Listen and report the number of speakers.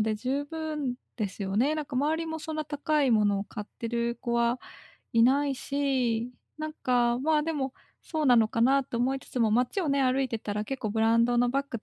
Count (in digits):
1